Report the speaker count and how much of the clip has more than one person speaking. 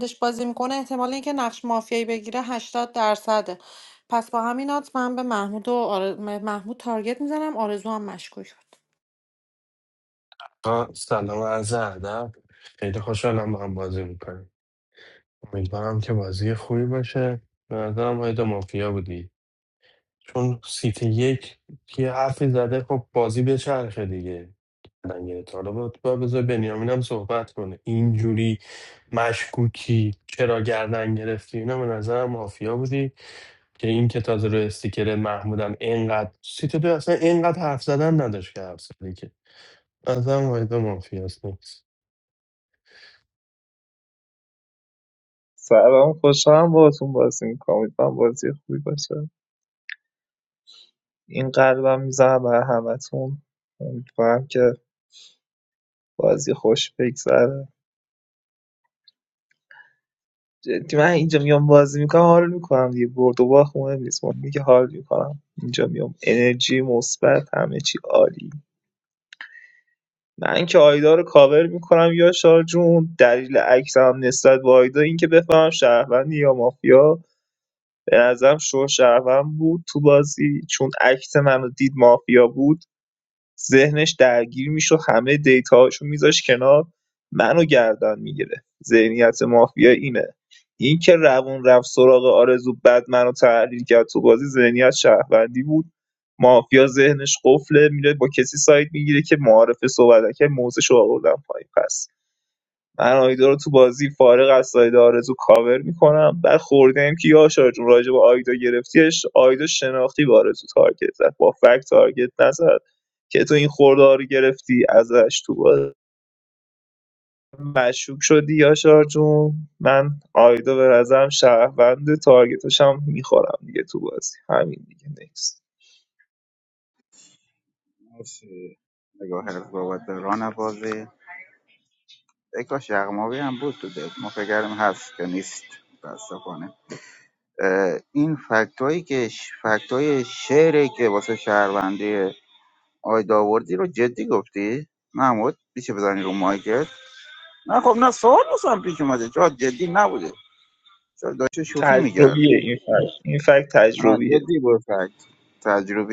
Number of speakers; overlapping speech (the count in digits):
4, about 1%